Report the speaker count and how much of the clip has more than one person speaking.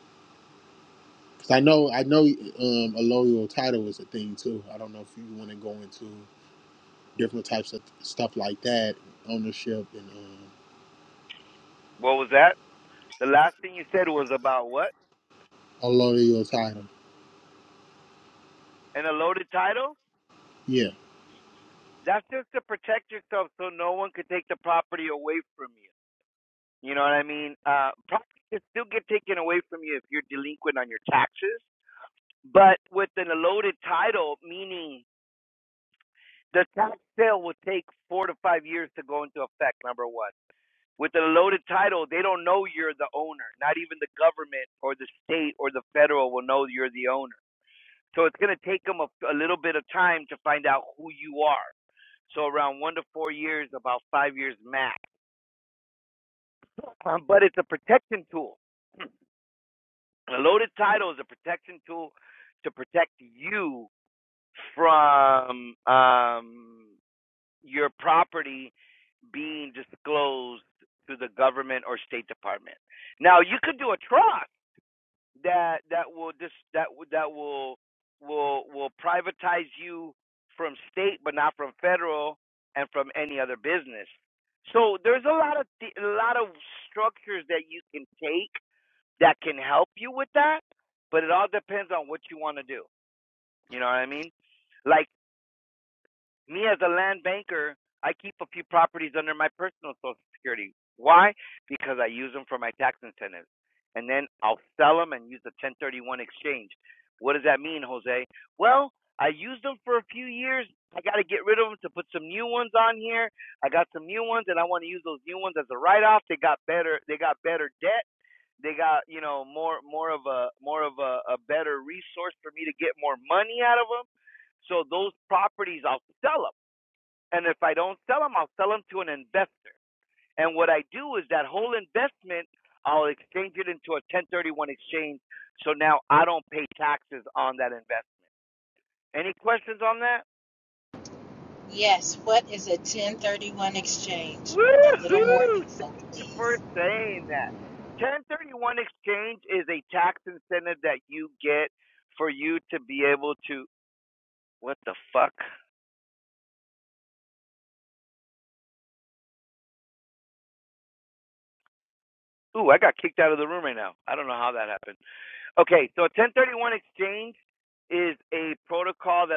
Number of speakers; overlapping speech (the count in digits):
3, about 1%